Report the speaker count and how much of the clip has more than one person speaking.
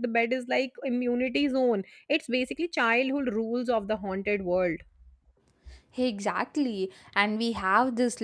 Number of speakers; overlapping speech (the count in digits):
2, no overlap